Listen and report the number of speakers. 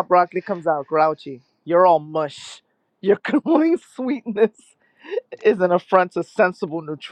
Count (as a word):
one